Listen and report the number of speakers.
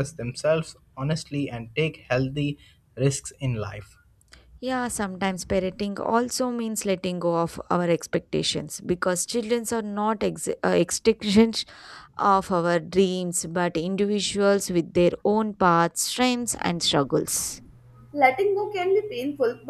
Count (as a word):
three